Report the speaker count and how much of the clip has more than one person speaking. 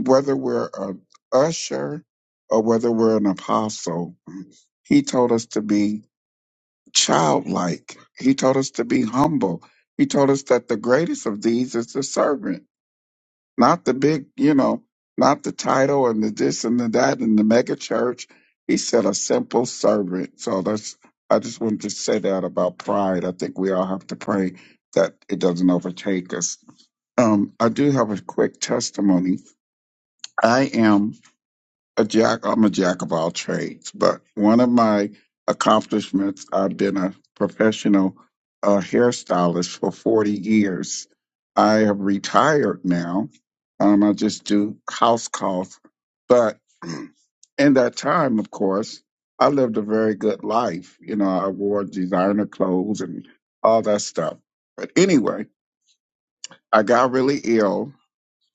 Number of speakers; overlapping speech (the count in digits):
1, no overlap